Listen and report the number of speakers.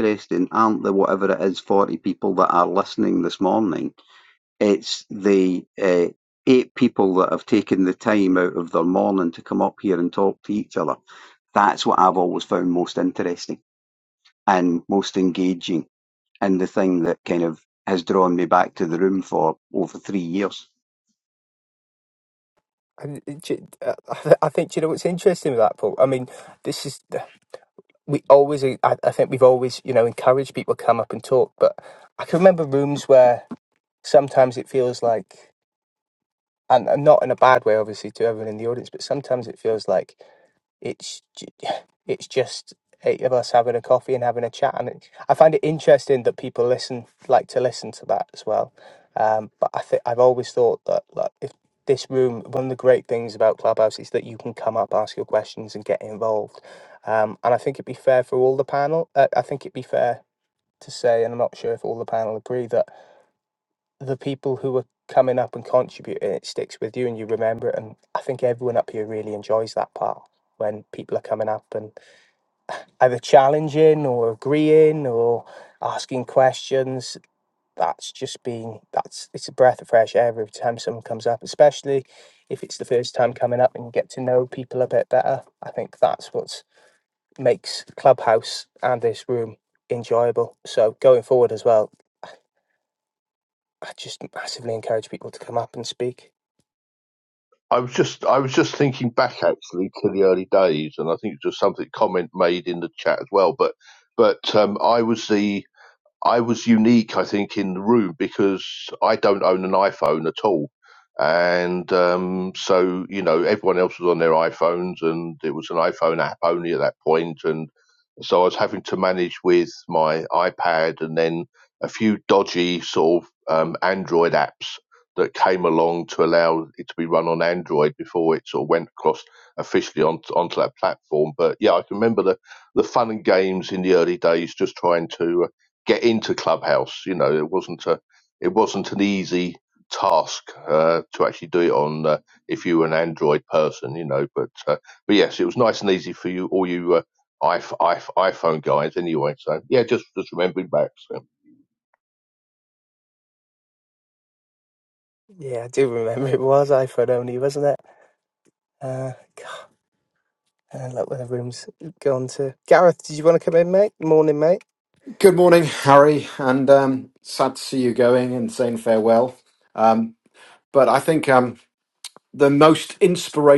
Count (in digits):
4